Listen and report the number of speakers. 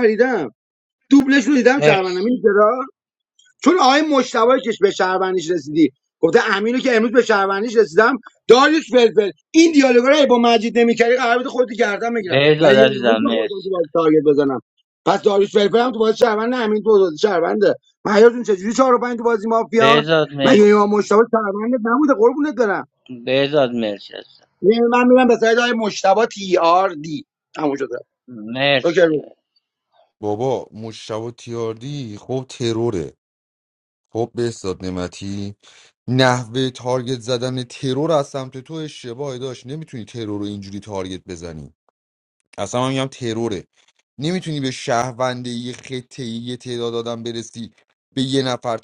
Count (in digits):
3